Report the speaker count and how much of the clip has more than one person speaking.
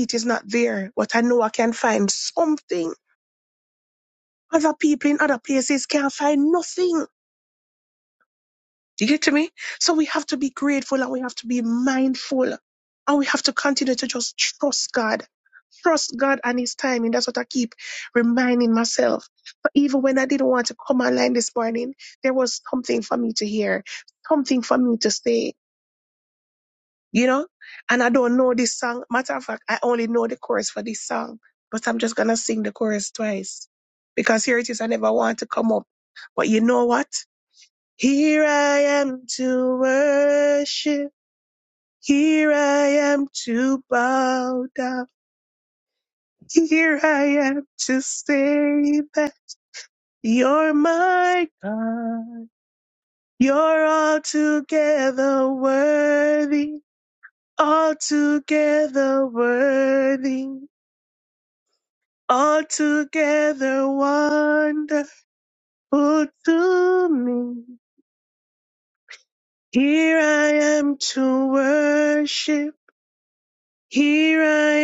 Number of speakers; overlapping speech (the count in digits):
1, no overlap